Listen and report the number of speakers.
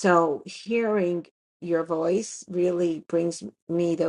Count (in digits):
1